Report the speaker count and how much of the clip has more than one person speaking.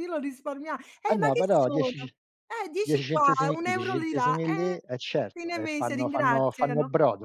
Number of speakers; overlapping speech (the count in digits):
2, about 60%